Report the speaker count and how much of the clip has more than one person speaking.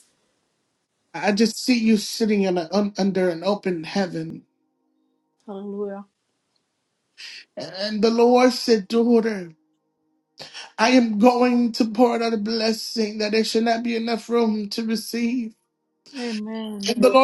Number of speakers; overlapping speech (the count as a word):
two, under 1%